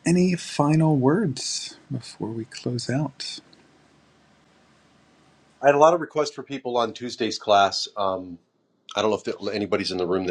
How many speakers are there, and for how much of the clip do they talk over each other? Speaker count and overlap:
2, no overlap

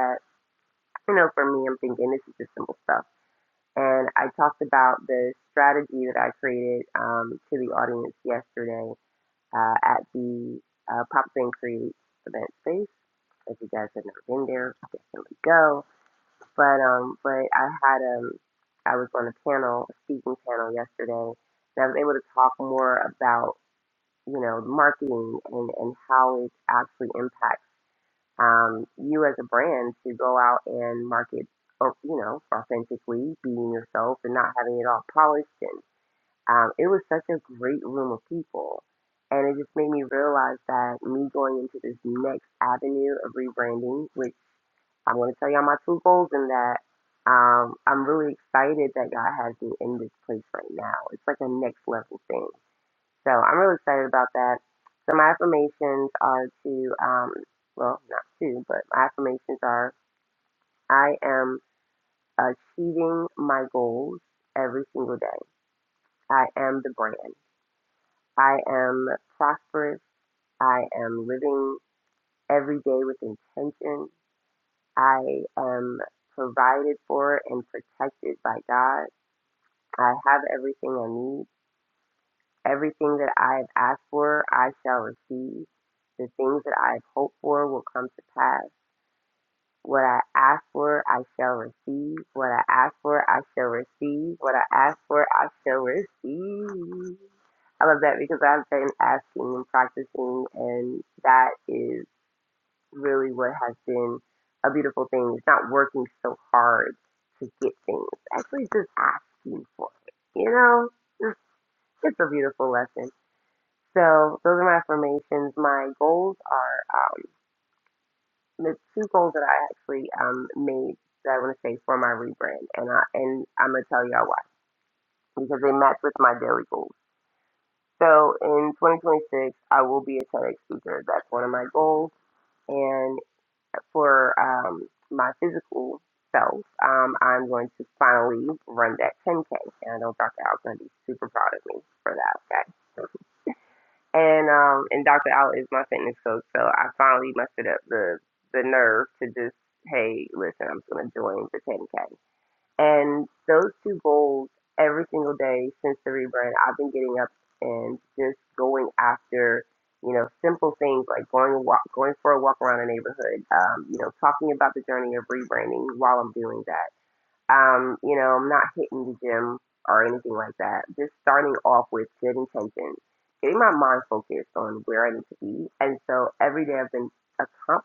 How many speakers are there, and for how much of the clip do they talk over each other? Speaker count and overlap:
1, no overlap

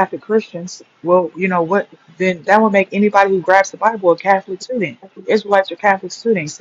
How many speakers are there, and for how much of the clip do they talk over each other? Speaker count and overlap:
1, no overlap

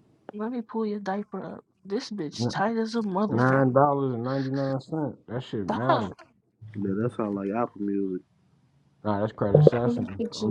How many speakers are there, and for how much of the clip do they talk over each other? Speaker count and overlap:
3, about 14%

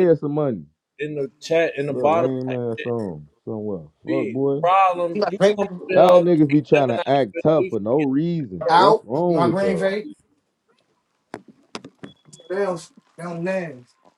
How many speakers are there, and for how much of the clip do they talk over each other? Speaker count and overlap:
3, about 27%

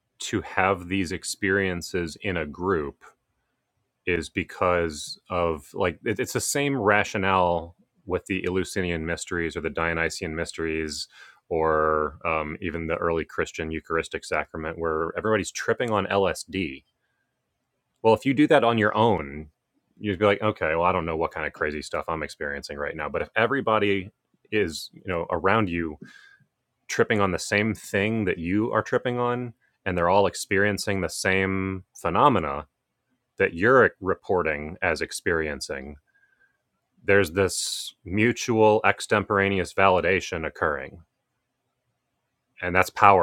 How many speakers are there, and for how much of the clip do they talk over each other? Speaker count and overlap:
1, no overlap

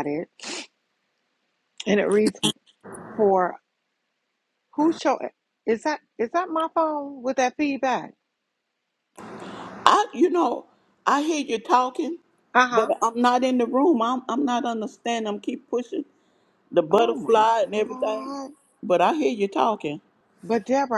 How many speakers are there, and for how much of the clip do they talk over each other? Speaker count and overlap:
2, about 8%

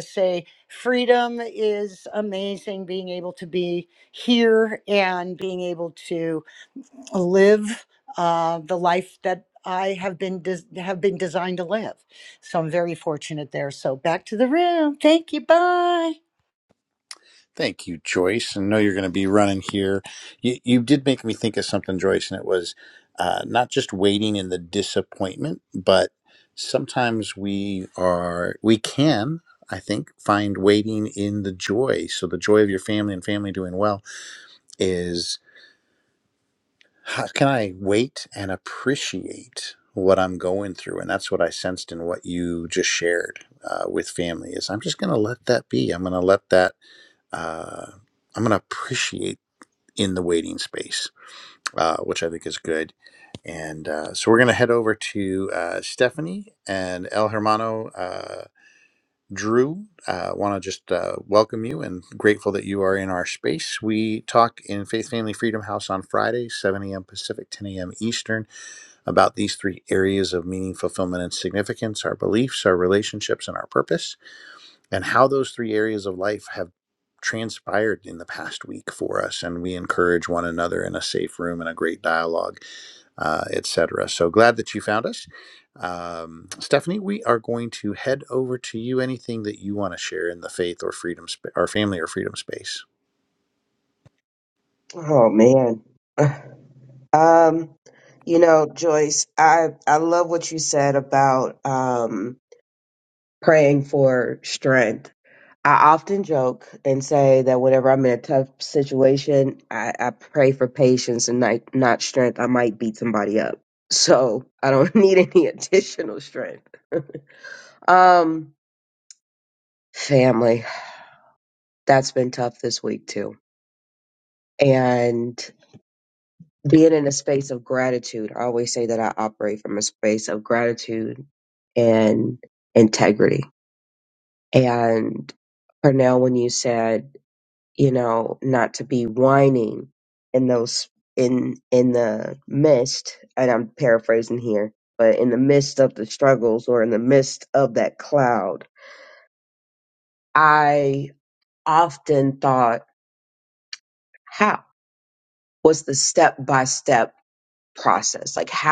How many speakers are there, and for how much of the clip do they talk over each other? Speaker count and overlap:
3, no overlap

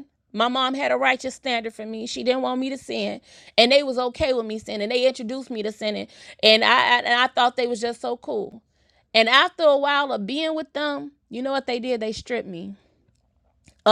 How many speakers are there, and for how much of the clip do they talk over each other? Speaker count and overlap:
1, no overlap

